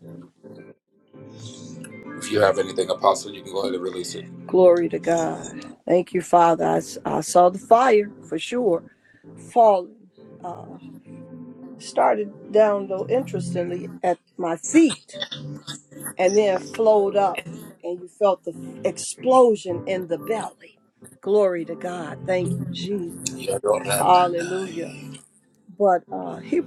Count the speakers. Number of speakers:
two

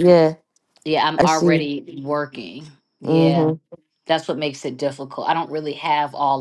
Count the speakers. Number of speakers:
two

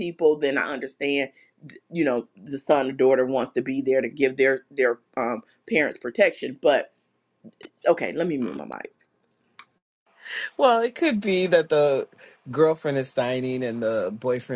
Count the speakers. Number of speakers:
two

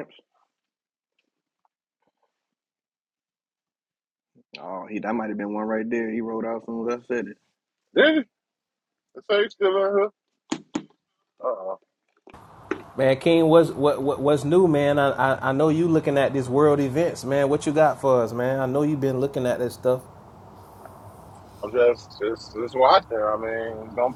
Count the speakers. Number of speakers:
three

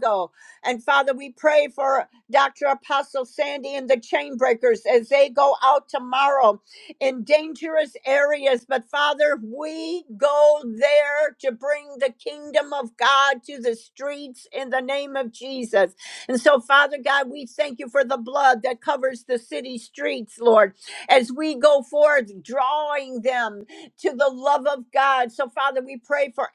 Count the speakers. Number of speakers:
one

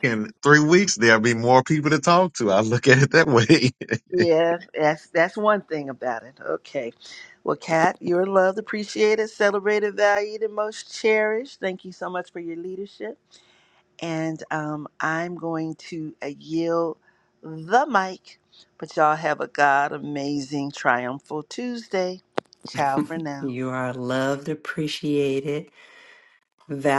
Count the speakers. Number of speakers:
three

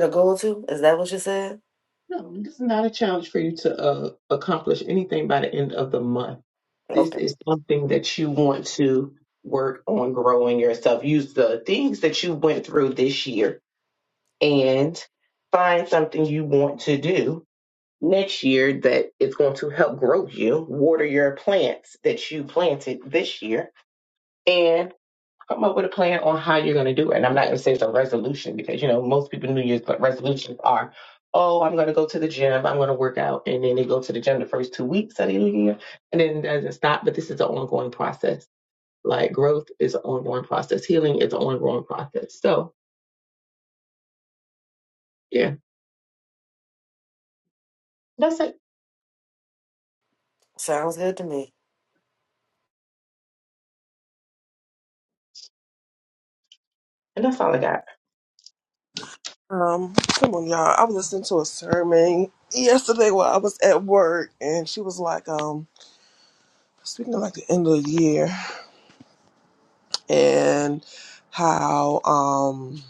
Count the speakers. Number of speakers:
three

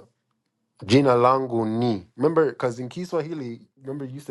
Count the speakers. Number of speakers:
one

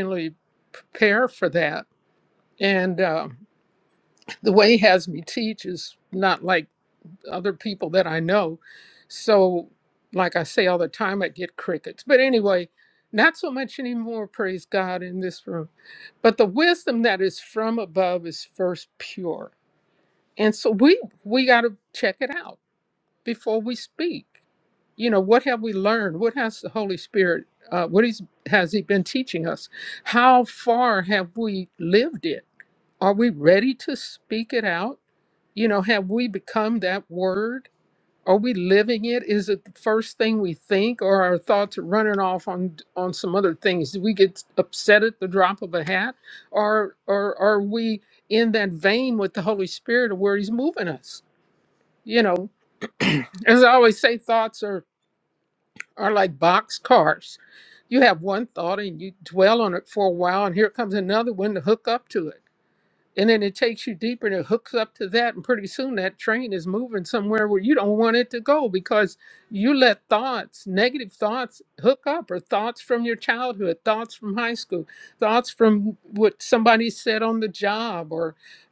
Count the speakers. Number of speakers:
one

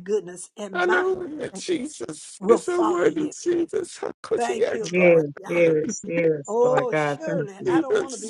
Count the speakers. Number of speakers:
three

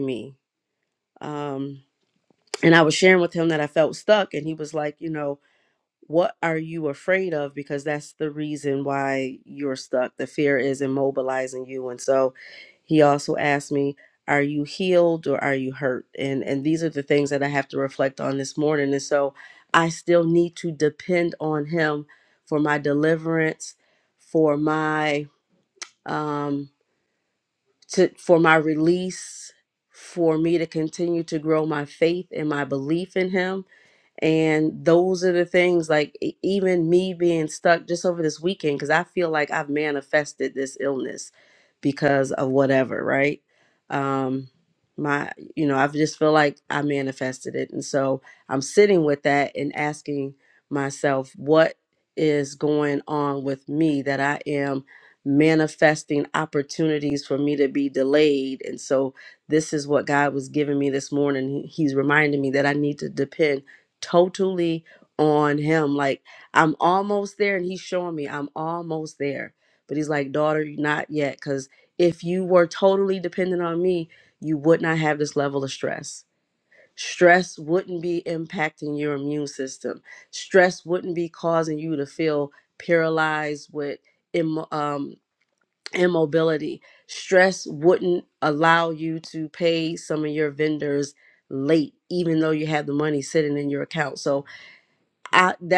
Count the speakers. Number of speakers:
one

